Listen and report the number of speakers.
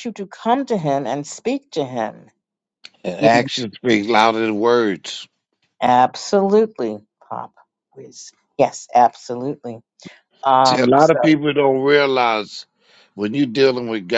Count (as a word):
two